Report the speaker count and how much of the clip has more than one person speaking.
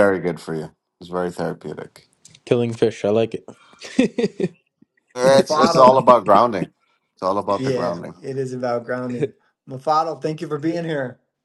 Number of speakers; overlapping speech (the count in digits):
3, about 11%